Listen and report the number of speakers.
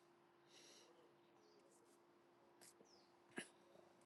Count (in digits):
0